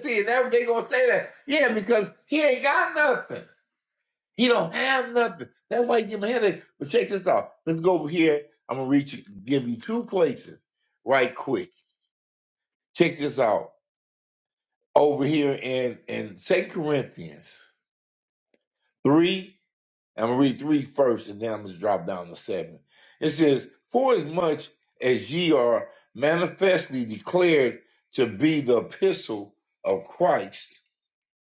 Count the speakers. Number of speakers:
1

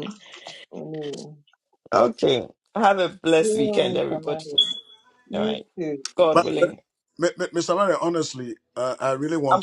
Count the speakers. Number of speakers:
3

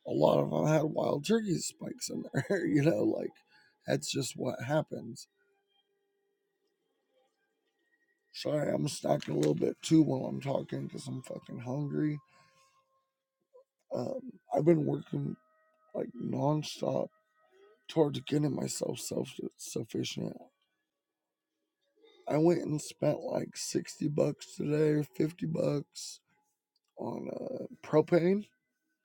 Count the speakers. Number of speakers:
1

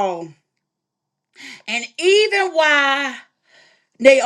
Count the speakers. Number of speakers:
1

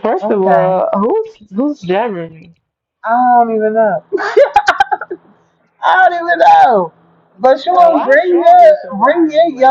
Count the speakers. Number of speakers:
2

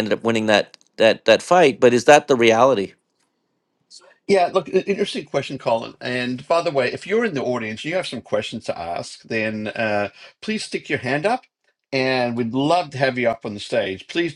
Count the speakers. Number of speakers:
2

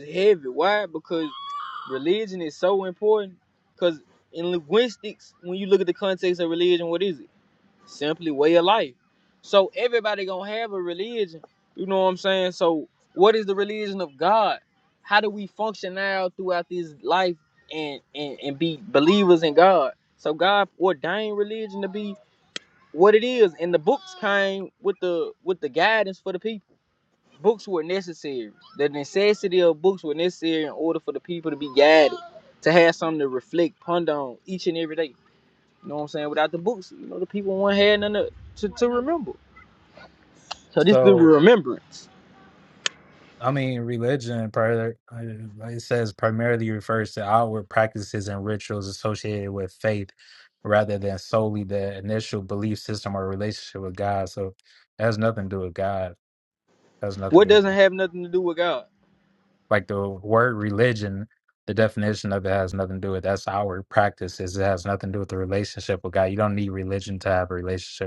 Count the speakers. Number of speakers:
2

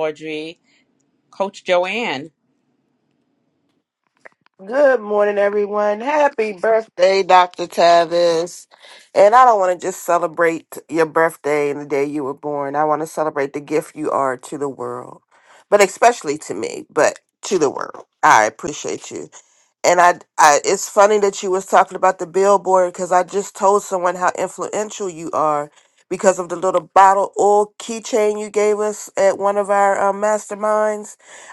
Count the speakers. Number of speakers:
2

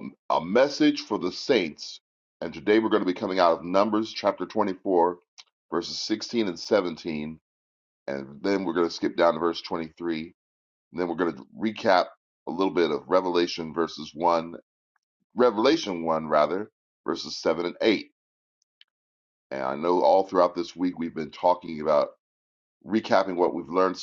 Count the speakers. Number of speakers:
1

